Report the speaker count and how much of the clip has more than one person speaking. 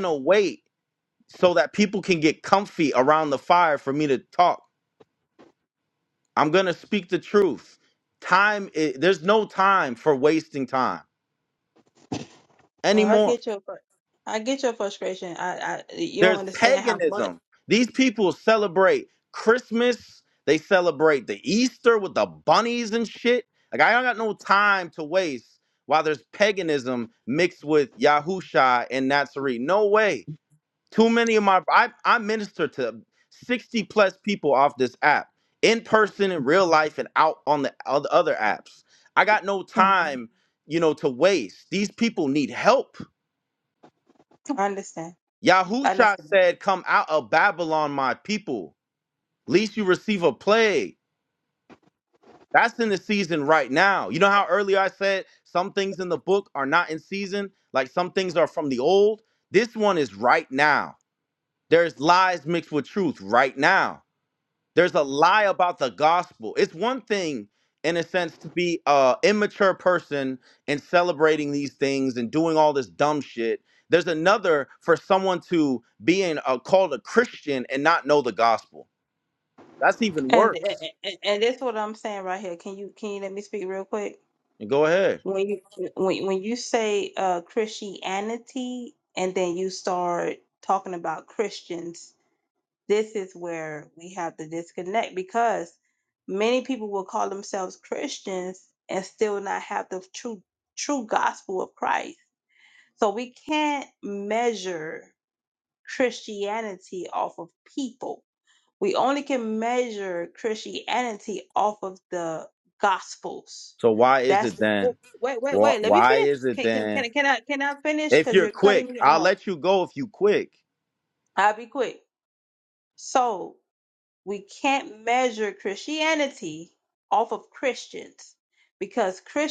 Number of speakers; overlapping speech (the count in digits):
2, about 4%